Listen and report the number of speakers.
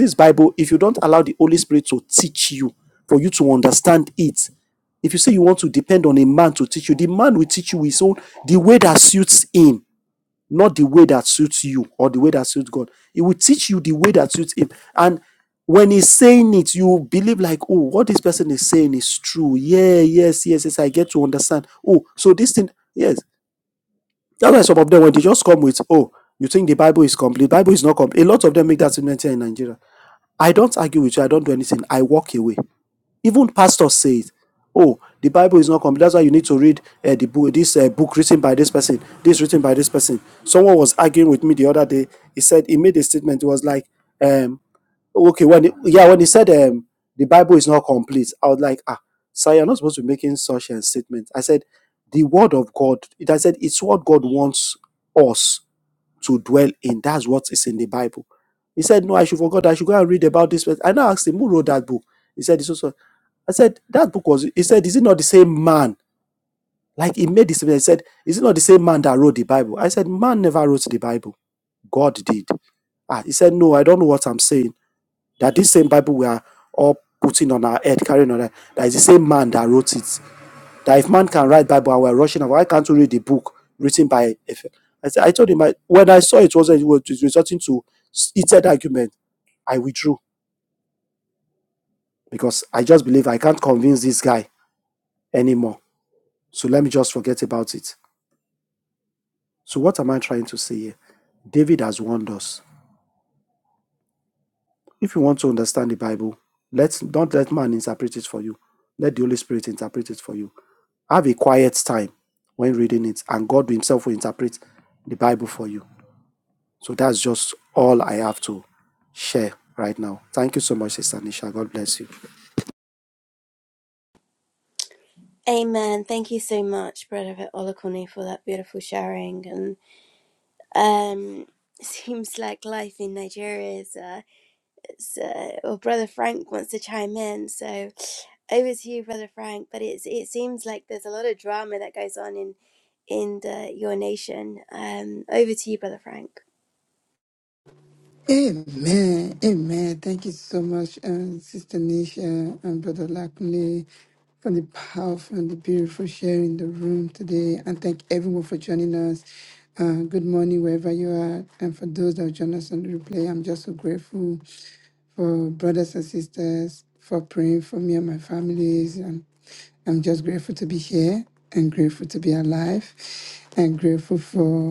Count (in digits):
3